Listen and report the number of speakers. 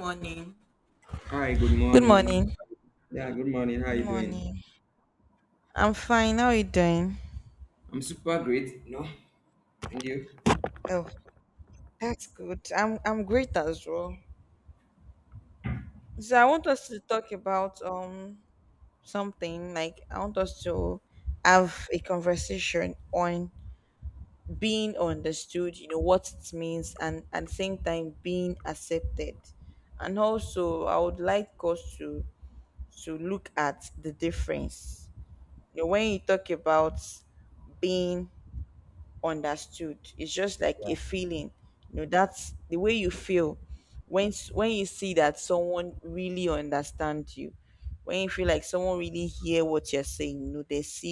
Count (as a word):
two